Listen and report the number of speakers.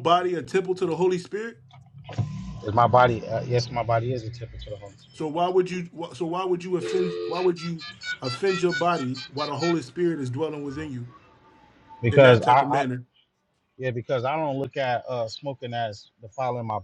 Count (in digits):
2